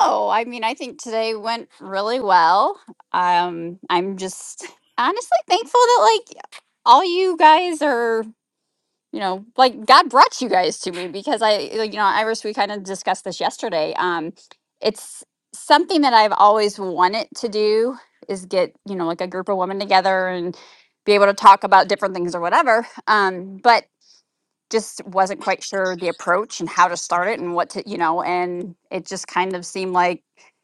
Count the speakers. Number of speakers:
one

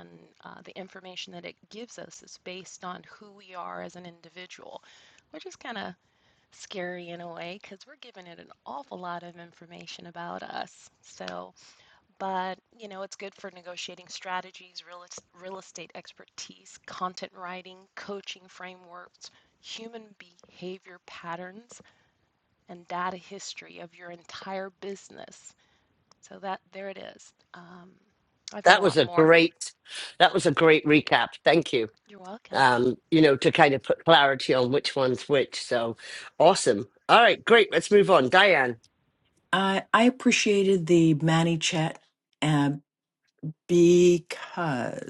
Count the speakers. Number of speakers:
three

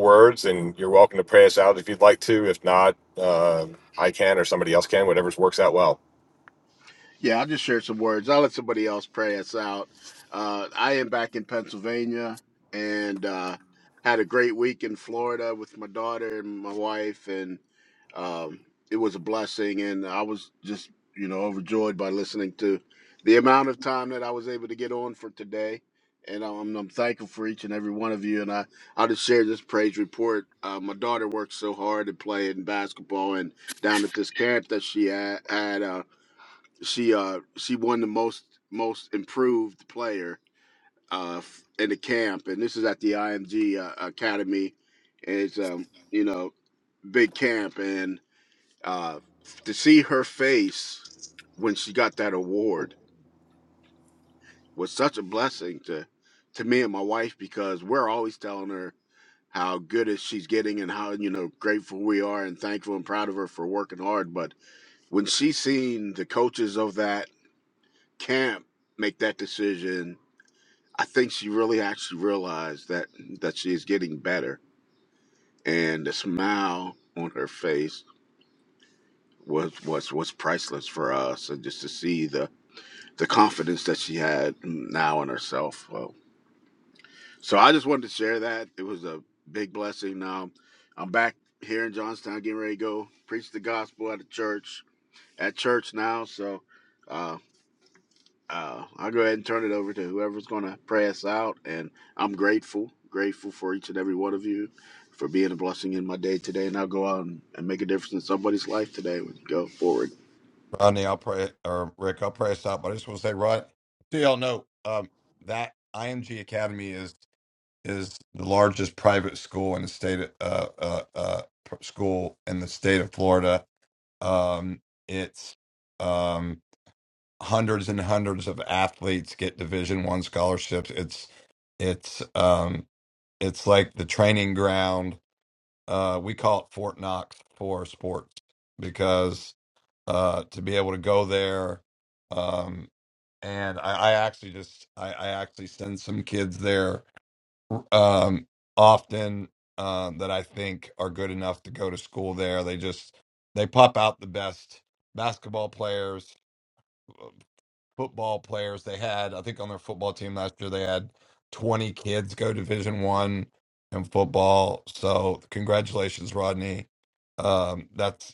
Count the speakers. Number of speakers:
three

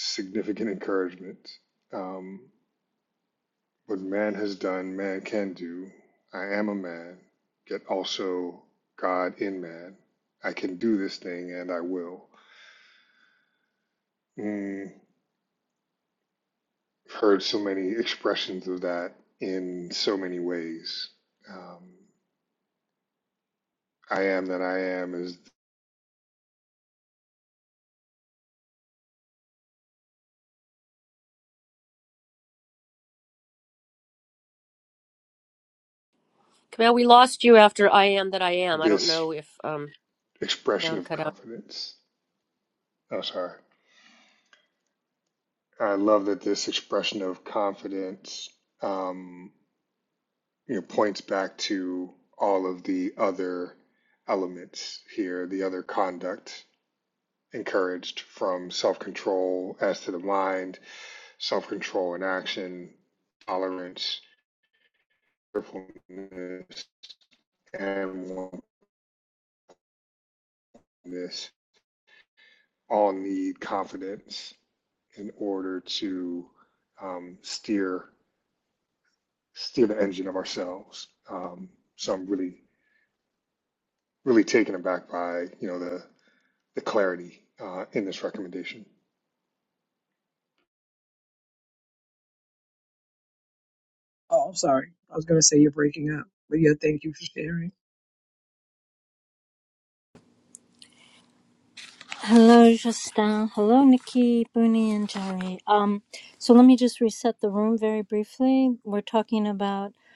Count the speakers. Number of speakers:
four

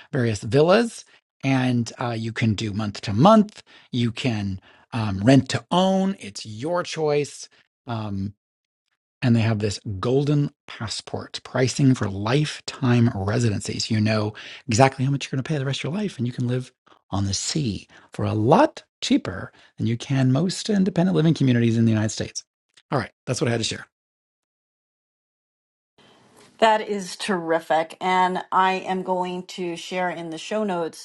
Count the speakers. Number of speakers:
two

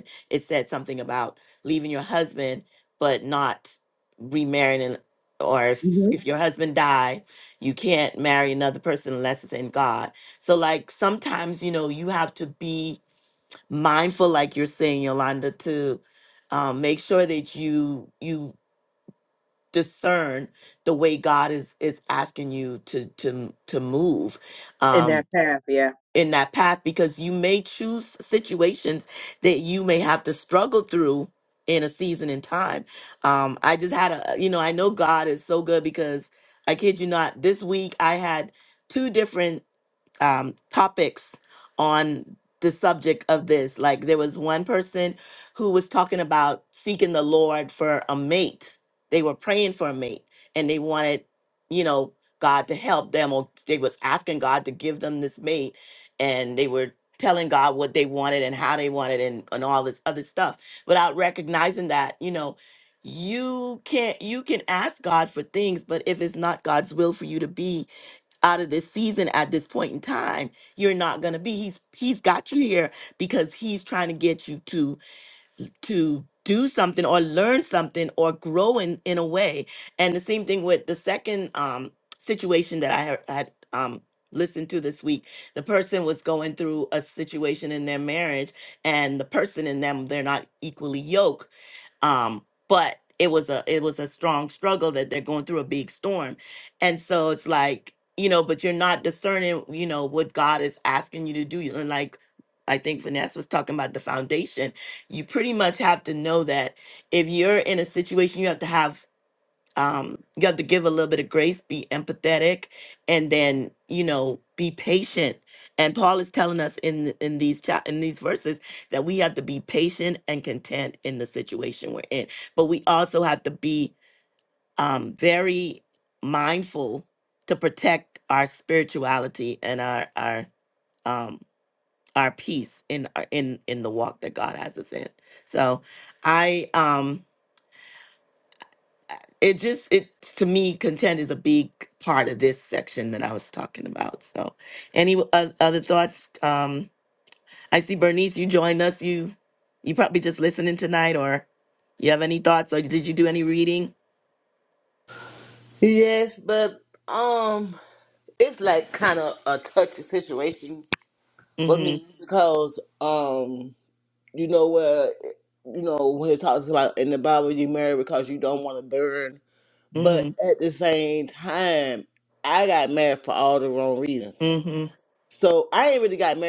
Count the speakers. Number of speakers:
three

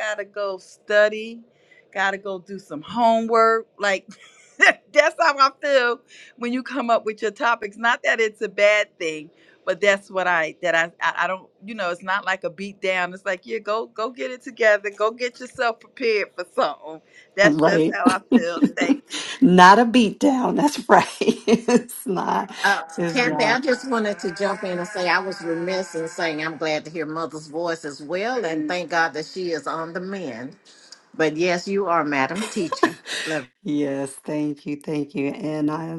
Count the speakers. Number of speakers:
three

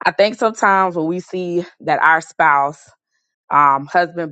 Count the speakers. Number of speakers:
one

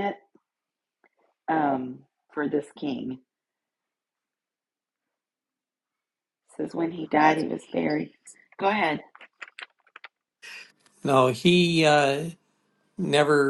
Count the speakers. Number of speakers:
two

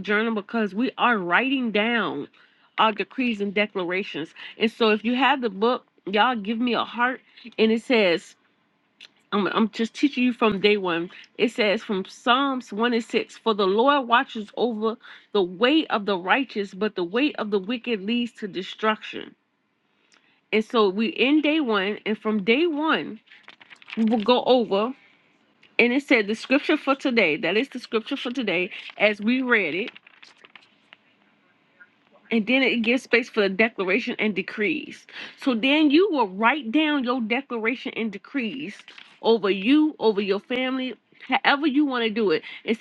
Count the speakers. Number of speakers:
one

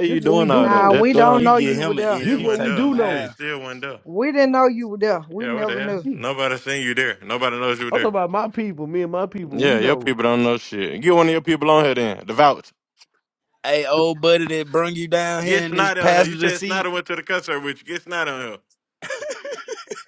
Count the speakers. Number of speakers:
four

